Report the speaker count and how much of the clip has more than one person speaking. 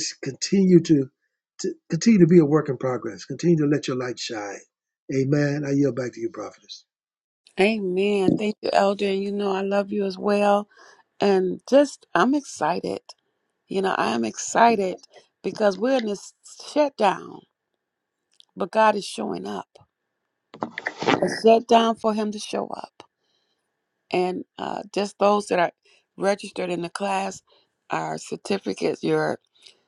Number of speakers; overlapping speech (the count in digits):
2, no overlap